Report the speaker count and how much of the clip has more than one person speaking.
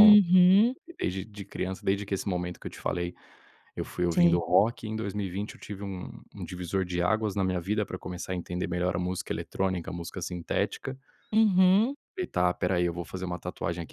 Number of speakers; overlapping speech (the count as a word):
two, about 3%